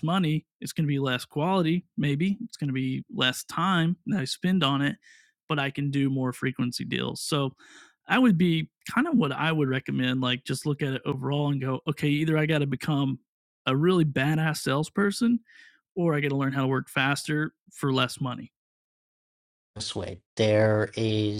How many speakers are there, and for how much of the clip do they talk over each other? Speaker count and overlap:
2, no overlap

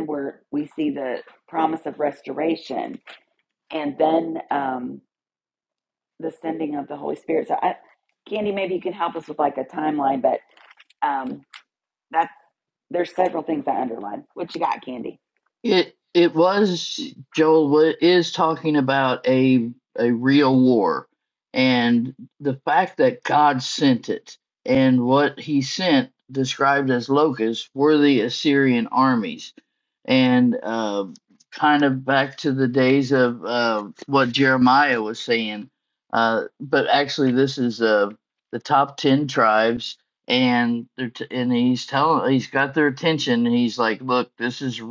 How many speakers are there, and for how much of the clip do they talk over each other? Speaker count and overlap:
2, no overlap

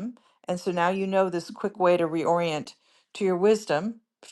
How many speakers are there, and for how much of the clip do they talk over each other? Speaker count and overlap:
1, no overlap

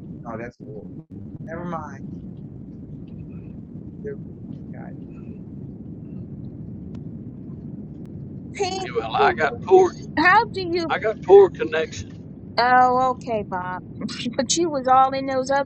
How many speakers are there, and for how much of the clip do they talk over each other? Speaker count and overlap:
3, about 1%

